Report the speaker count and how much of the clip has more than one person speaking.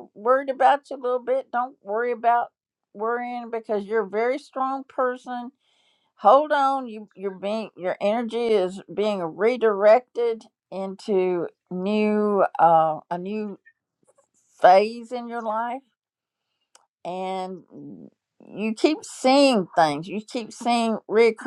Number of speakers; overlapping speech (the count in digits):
1, no overlap